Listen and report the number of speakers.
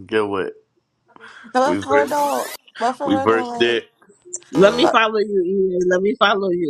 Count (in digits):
3